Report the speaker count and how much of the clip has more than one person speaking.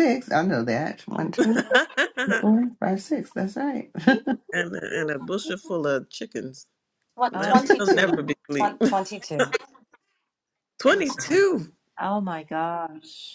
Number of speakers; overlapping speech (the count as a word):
four, about 13%